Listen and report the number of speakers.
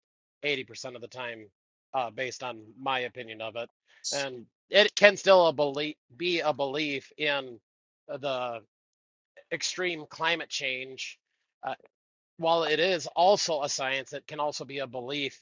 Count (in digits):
1